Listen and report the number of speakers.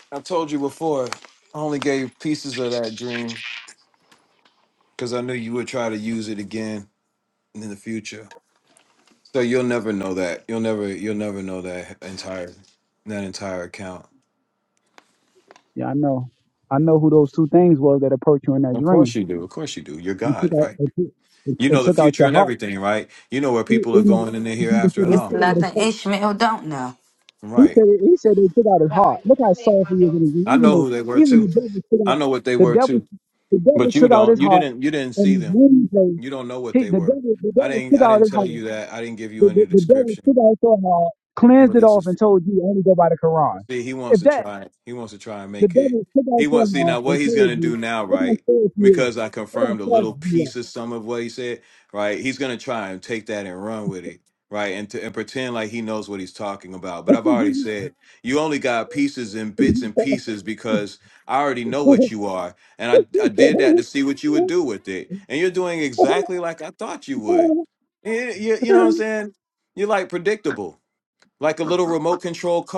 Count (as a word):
three